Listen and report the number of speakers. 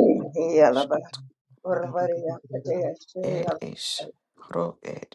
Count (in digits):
2